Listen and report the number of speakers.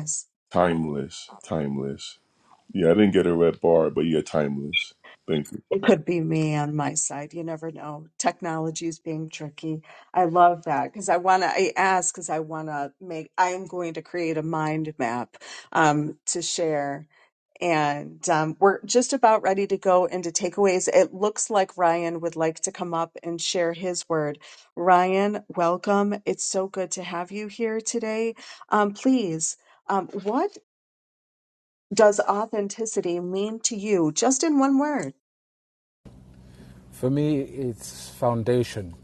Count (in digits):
3